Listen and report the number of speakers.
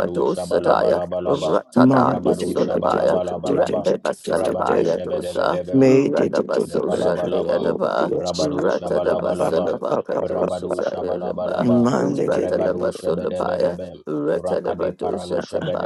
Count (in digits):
3